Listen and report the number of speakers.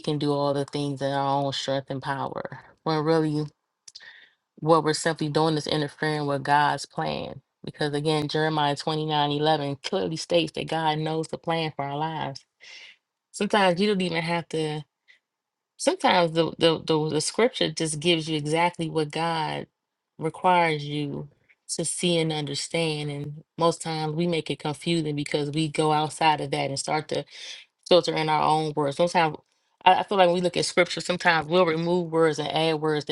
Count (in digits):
1